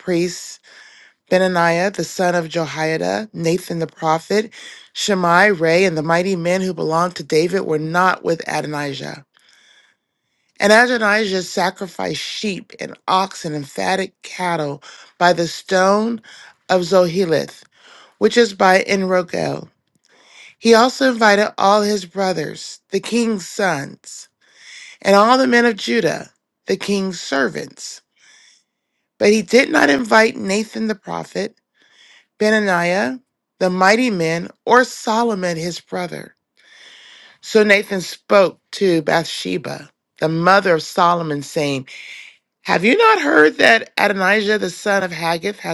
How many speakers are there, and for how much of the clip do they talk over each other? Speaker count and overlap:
1, no overlap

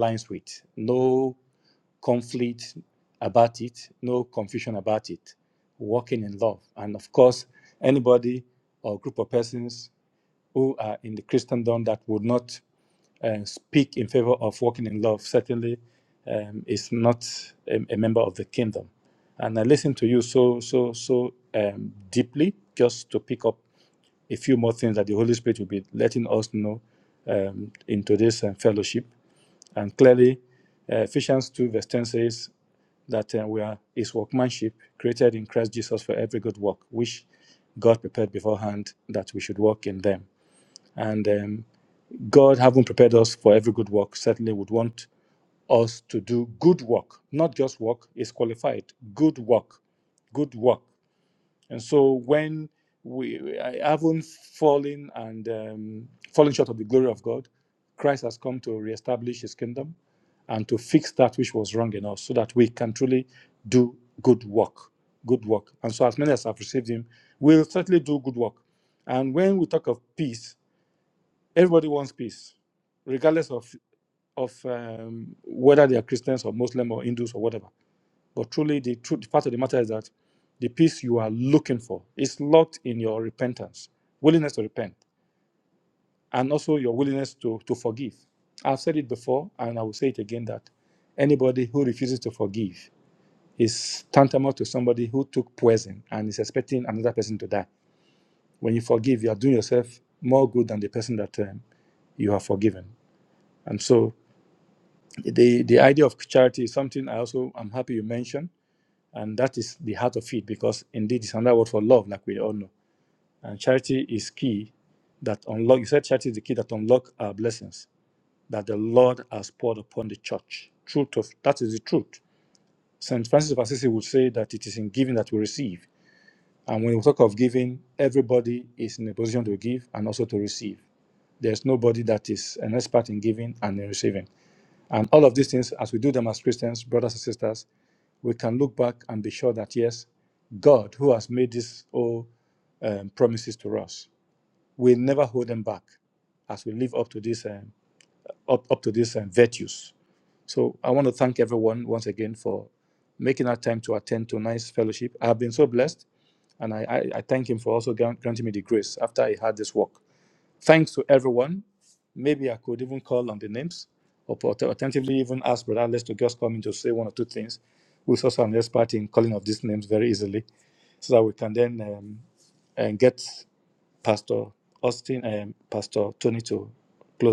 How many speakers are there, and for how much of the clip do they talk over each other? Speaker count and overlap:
1, no overlap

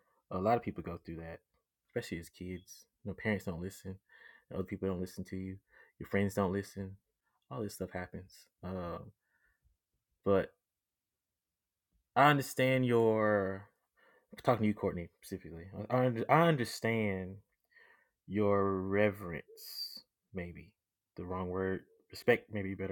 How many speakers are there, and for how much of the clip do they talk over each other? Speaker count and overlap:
1, no overlap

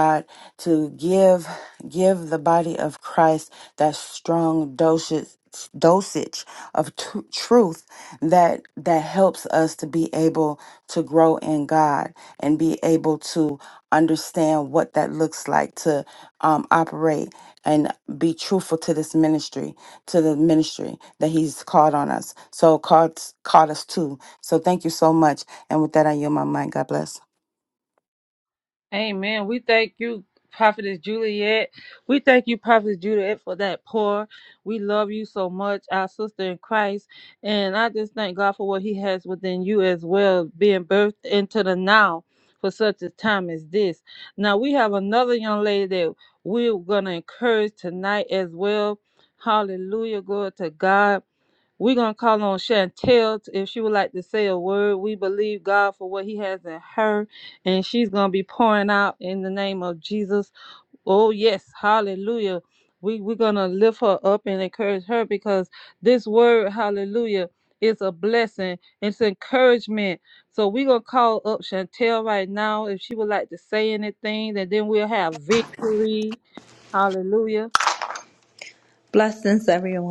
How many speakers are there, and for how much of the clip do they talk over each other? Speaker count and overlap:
3, no overlap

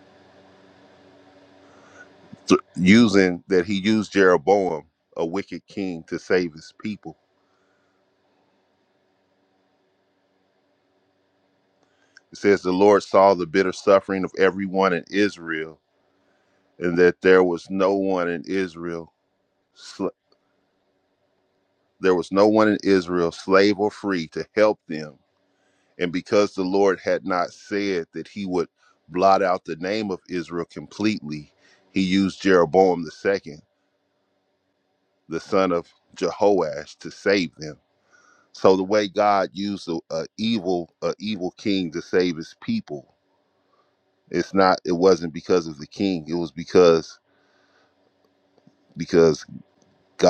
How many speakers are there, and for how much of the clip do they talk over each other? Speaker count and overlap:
1, no overlap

